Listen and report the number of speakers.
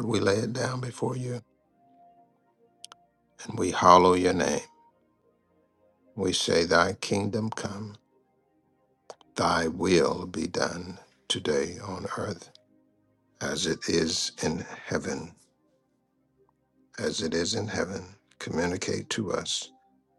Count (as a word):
one